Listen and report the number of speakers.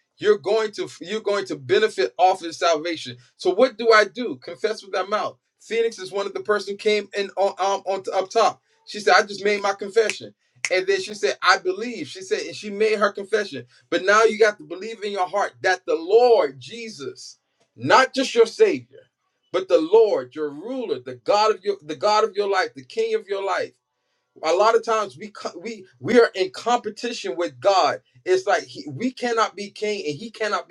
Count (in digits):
1